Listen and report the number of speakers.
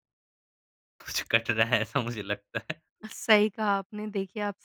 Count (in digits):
2